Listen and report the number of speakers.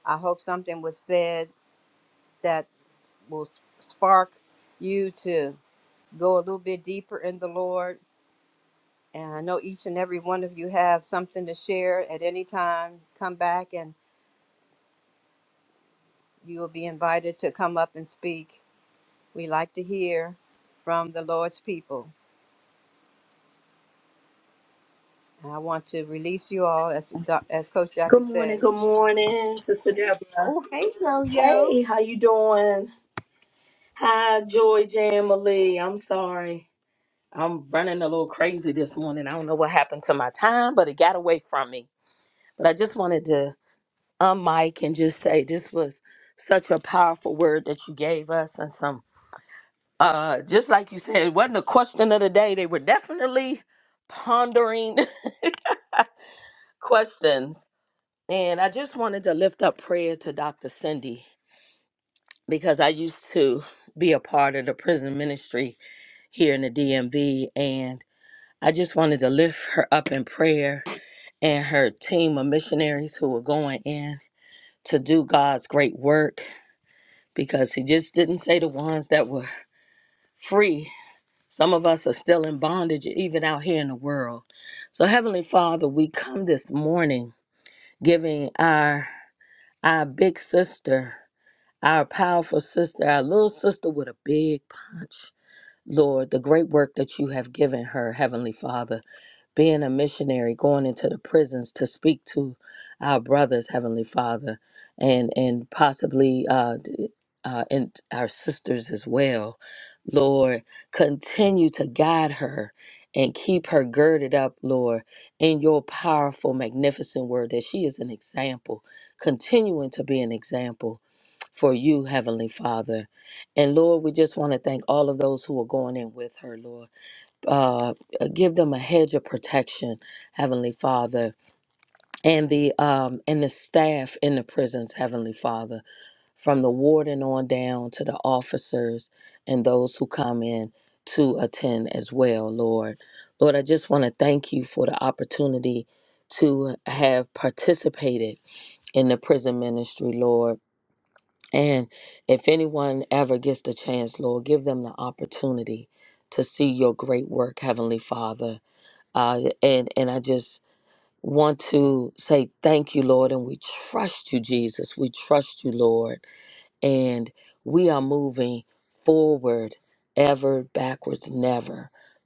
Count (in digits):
2